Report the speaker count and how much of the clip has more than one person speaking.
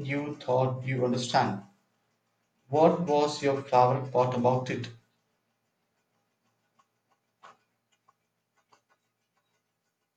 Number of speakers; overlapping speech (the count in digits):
1, no overlap